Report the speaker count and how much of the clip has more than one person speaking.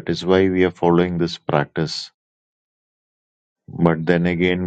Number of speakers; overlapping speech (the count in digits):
1, no overlap